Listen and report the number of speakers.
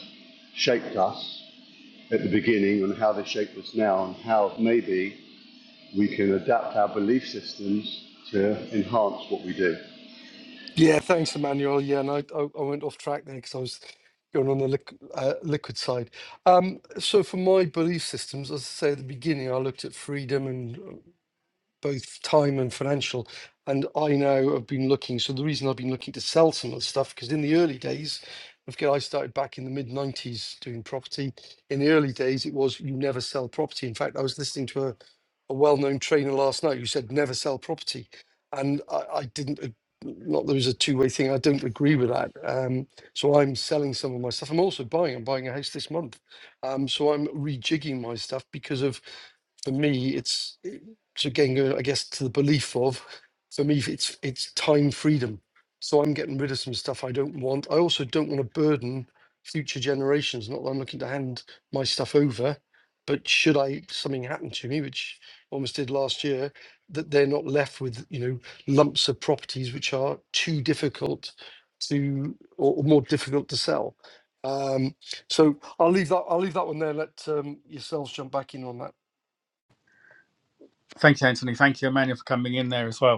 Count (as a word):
three